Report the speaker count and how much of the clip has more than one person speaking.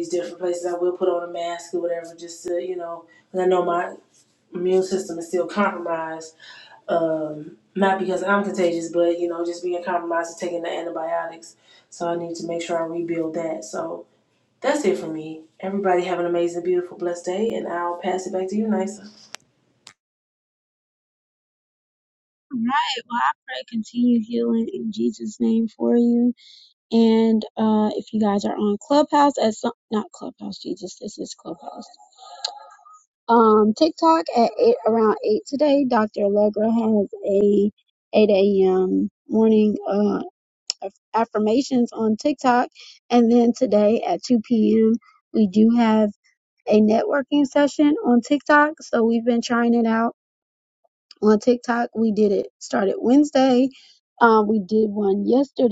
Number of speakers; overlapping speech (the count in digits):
2, no overlap